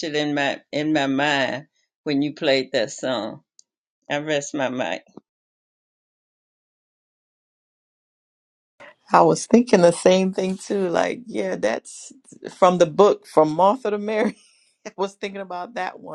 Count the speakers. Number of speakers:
2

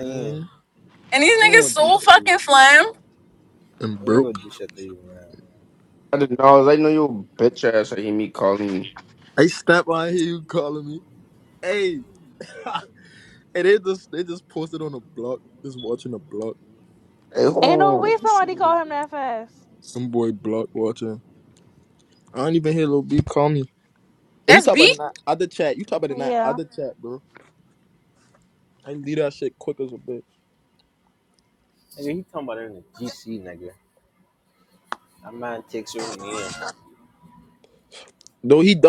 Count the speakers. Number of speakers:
5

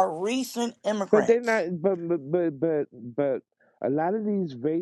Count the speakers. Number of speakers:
2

